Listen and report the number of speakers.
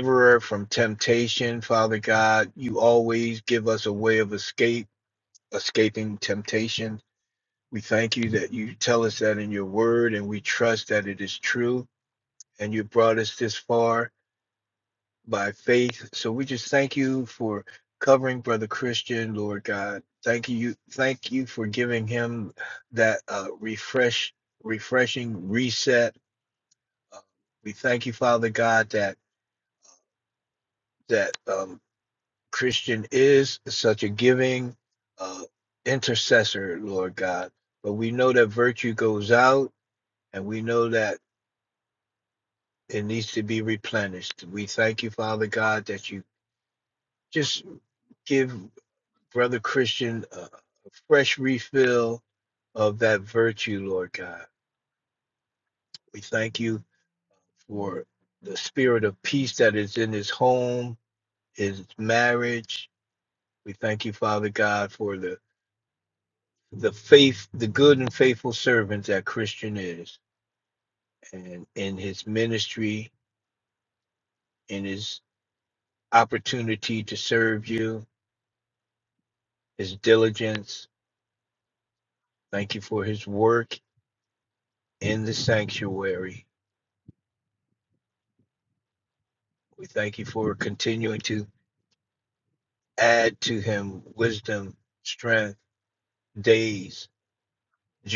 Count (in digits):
1